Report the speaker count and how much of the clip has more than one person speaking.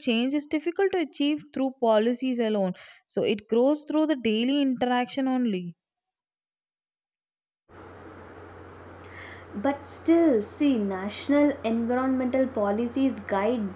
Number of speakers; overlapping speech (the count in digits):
2, no overlap